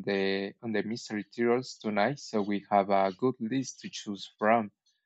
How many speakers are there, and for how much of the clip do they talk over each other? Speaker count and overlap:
one, no overlap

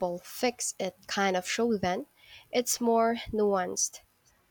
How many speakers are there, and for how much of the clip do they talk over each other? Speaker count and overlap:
one, no overlap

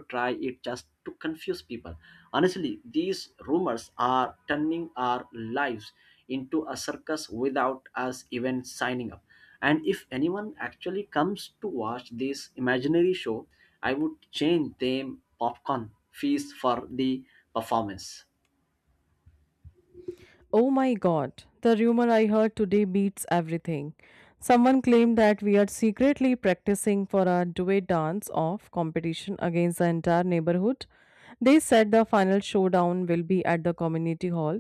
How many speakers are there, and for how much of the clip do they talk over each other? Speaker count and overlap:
two, no overlap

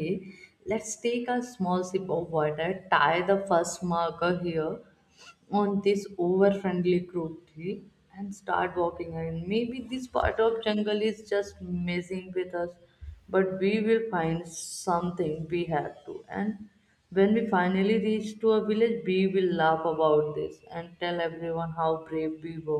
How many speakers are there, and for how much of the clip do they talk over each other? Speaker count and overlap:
one, no overlap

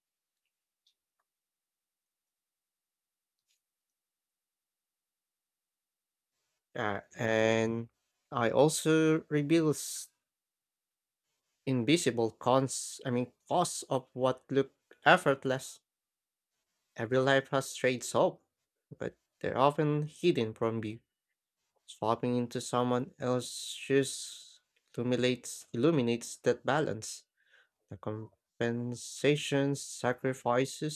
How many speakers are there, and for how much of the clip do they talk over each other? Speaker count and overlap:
one, no overlap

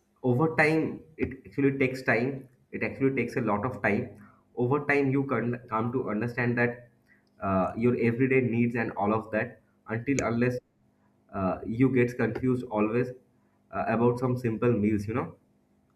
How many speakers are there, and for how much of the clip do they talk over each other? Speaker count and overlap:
one, no overlap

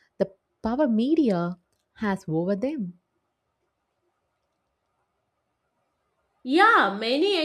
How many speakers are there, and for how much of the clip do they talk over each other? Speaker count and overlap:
two, no overlap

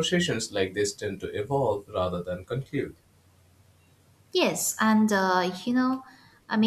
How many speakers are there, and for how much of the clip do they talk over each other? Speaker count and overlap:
two, no overlap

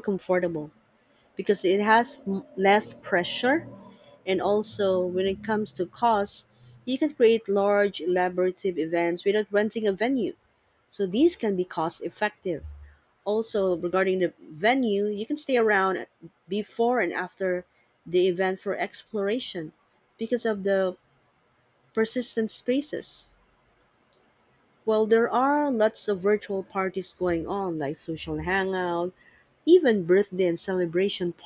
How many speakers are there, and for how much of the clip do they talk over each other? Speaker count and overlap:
one, no overlap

